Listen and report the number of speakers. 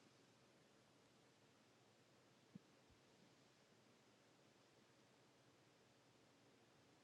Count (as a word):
zero